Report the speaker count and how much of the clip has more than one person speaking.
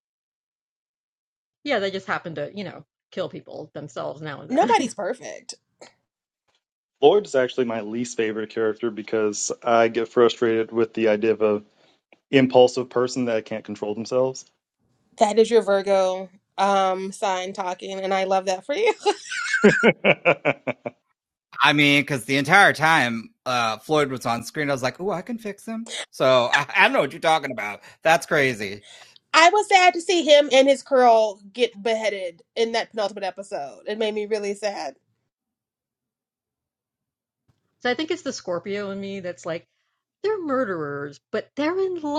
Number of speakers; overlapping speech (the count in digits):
4, about 1%